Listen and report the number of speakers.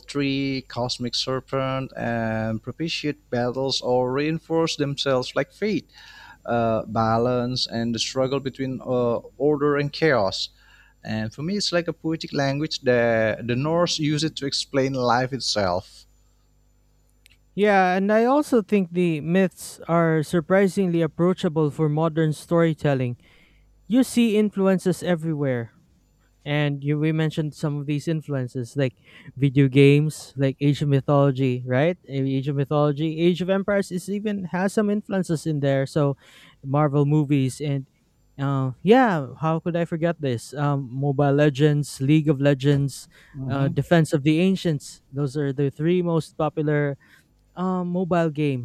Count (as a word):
two